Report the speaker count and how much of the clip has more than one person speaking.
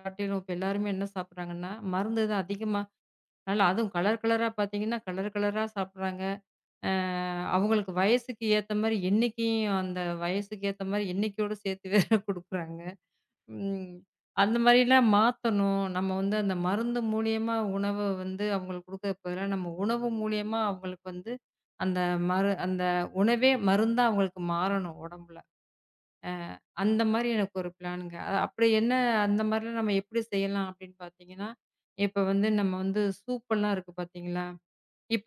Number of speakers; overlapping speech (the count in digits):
1, no overlap